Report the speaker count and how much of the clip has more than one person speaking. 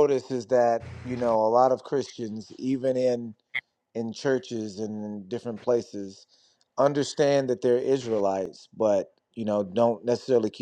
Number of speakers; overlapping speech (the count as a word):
one, no overlap